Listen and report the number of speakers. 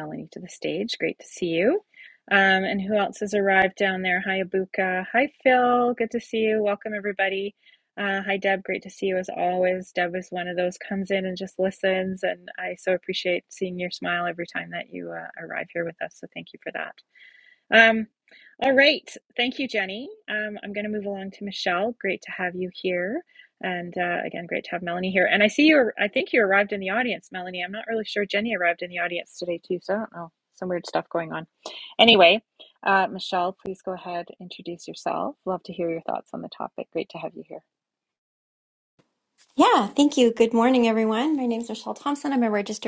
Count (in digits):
2